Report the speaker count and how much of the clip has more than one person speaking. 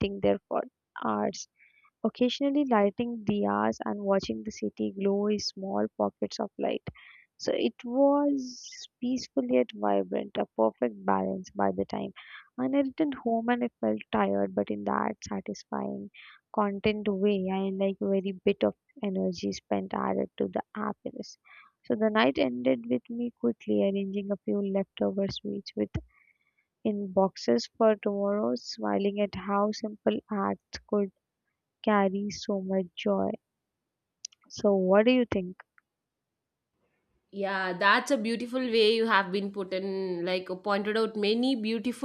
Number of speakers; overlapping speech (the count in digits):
2, no overlap